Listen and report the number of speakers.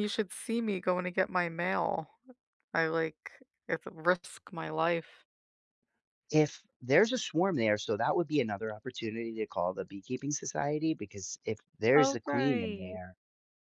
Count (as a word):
two